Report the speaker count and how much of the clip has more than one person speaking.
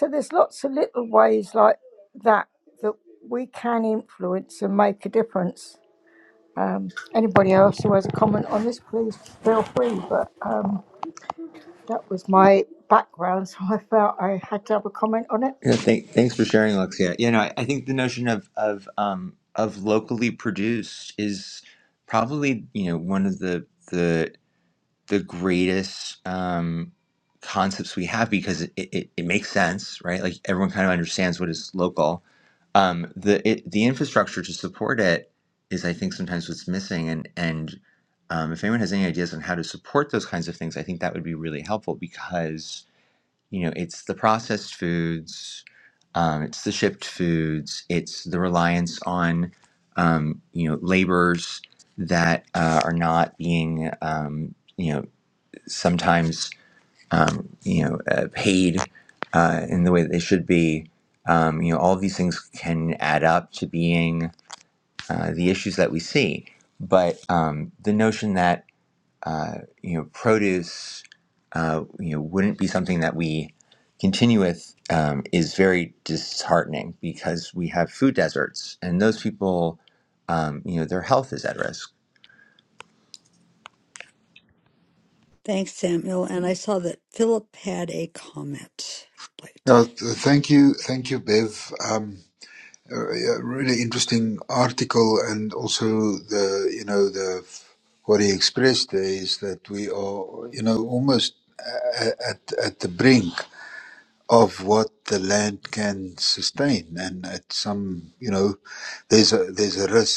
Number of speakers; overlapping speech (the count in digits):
4, under 1%